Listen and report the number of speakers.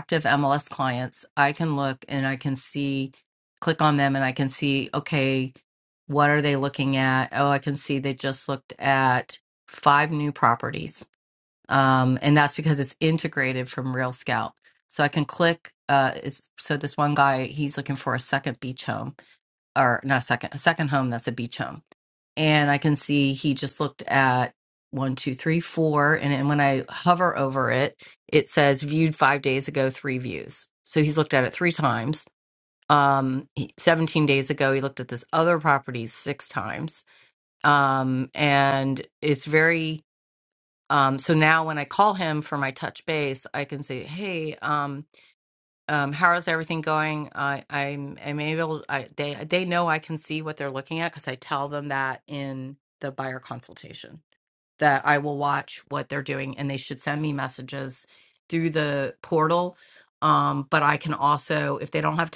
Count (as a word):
one